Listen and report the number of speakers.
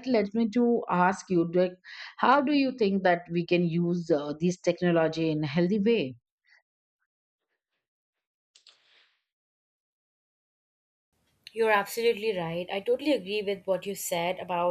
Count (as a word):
two